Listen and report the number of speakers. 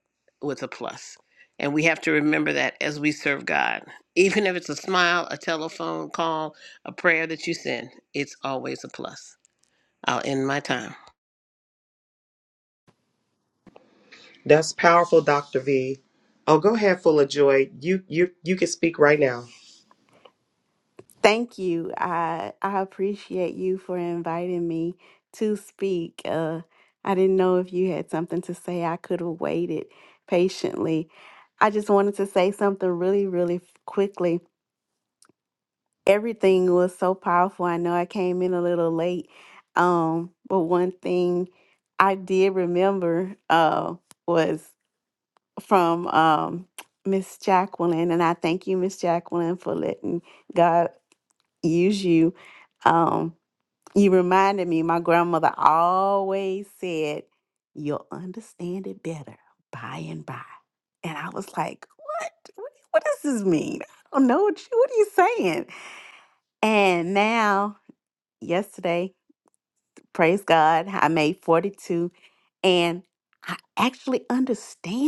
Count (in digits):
3